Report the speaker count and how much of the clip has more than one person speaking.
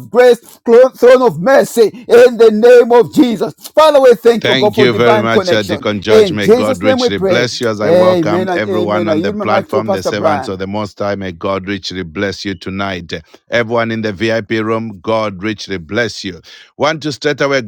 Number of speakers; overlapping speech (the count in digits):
2, about 32%